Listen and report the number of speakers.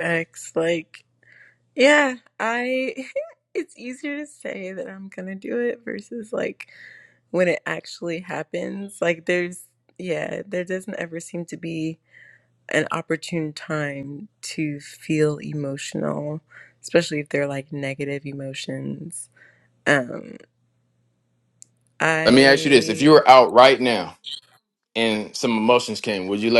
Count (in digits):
2